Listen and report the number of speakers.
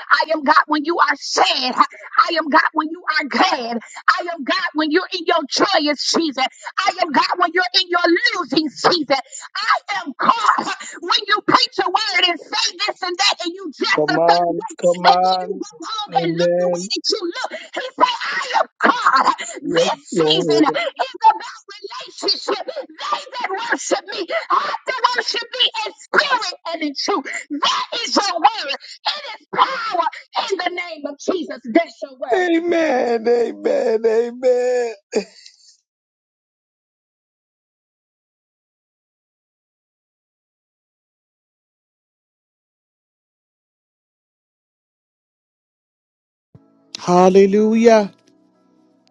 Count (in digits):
3